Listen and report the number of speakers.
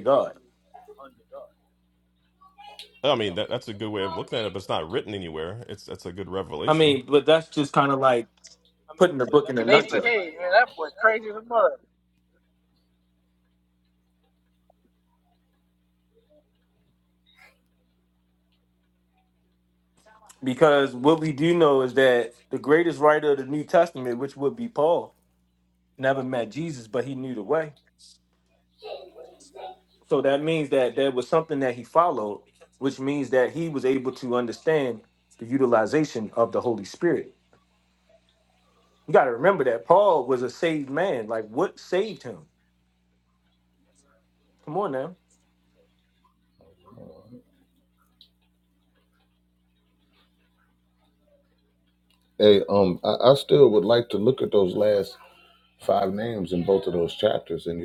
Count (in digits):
4